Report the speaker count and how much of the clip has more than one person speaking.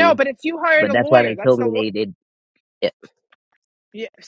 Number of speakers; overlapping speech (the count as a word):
two, about 26%